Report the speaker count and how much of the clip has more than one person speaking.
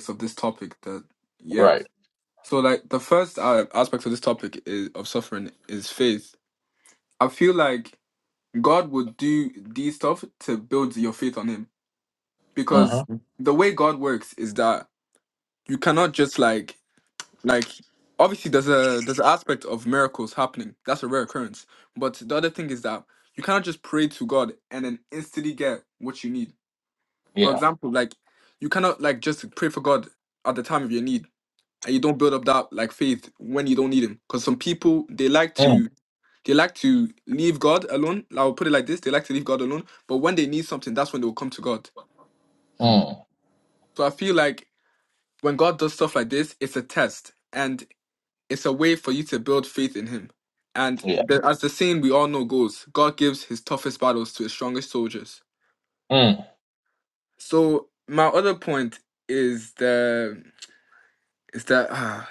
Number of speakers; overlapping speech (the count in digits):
2, about 2%